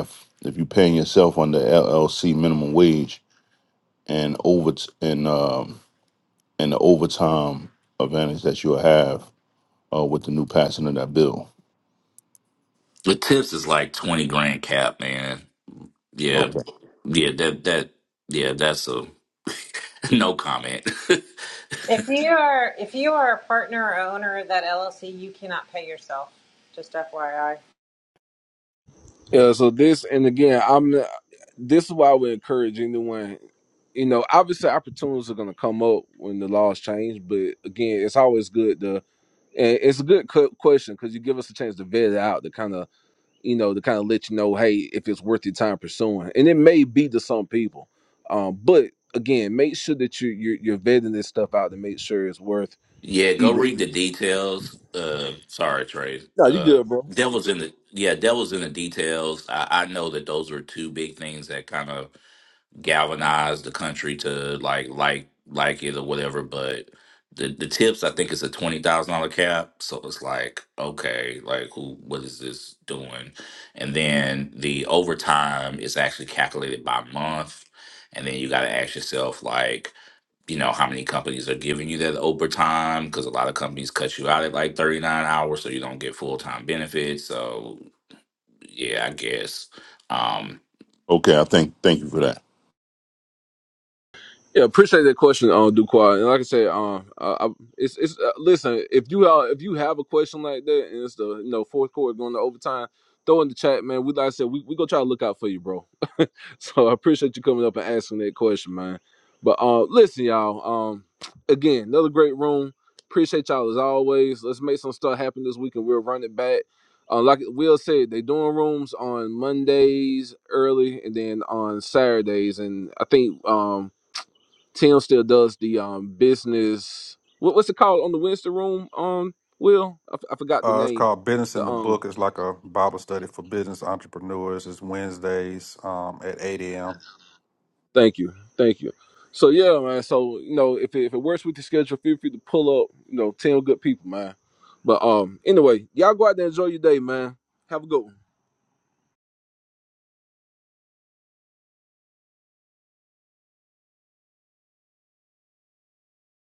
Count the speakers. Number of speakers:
five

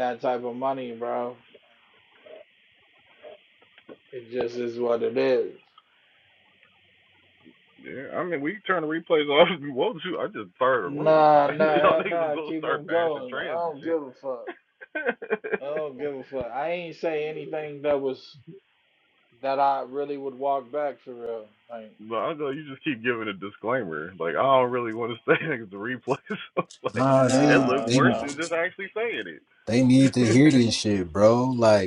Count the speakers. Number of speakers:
three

